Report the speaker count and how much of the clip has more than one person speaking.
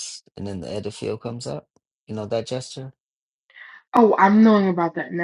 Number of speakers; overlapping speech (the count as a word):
two, no overlap